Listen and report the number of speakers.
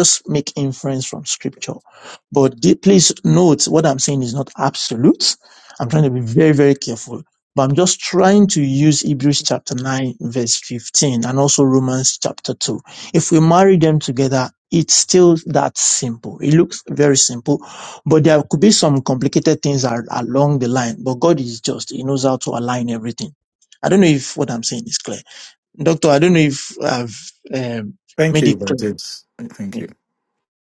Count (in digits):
2